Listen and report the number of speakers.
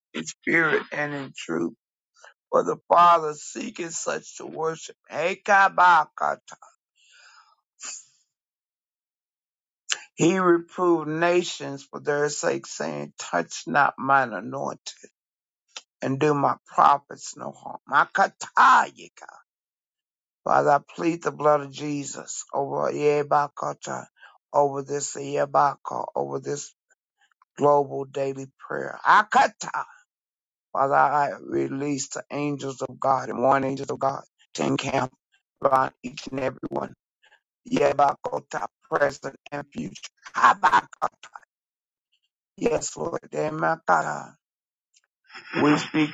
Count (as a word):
one